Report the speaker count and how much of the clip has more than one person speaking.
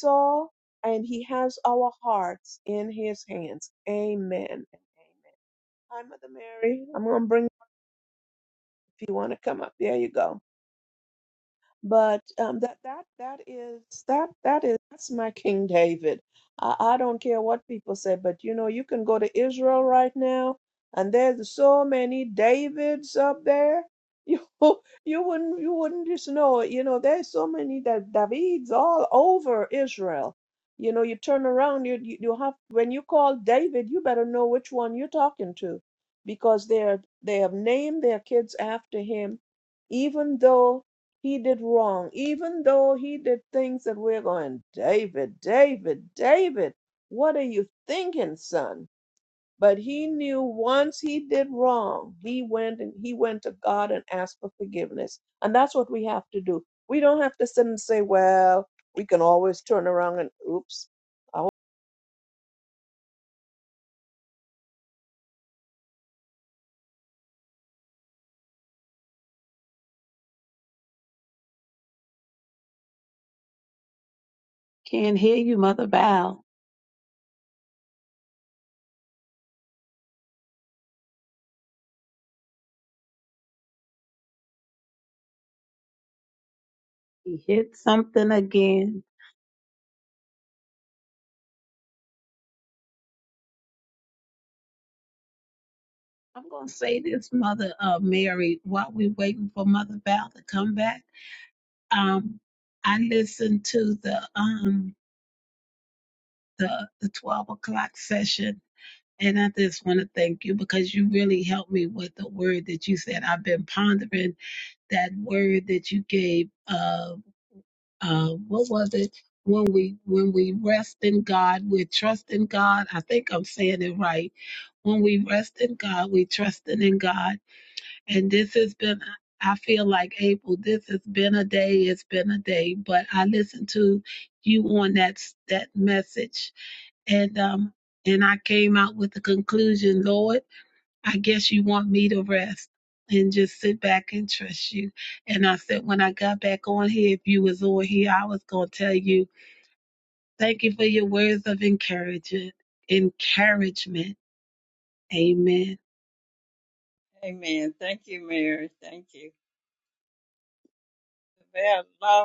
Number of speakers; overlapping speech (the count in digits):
3, no overlap